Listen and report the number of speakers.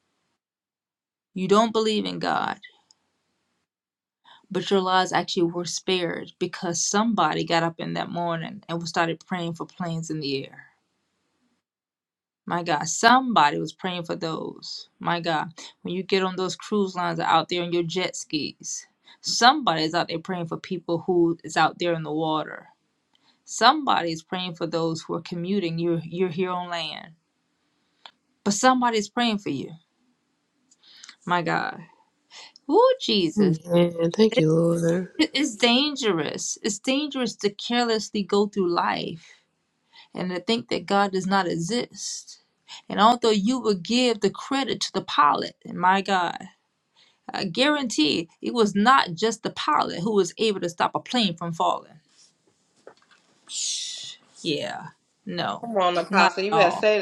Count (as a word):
three